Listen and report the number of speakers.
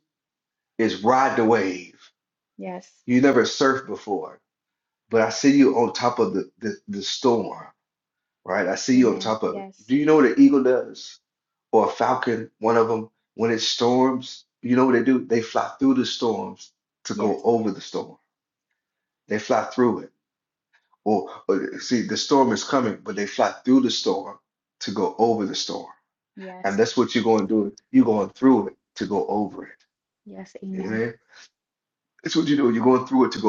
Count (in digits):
2